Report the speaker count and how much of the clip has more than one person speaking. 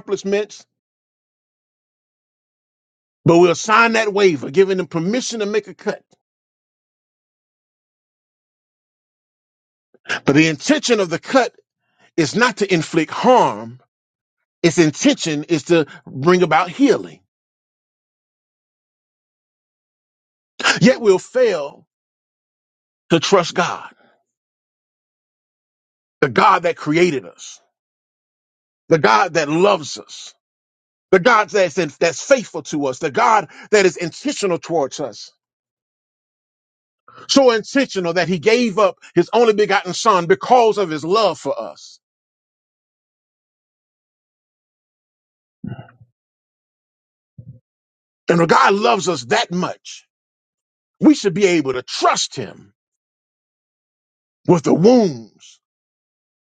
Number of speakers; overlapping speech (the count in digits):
1, no overlap